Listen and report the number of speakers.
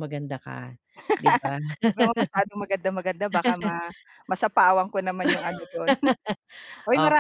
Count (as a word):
two